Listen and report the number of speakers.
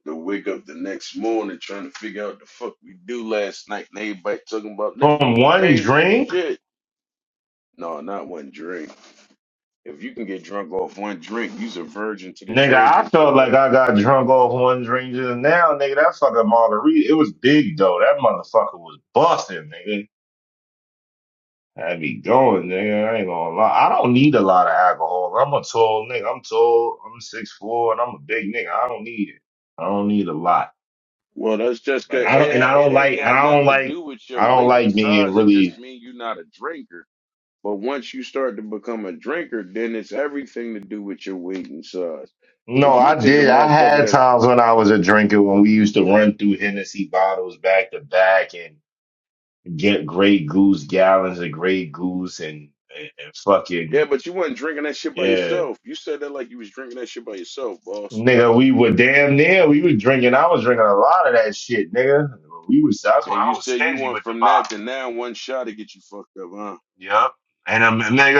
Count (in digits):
2